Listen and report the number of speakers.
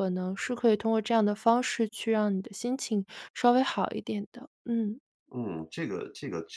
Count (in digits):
2